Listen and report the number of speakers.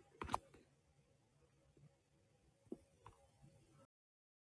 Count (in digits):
0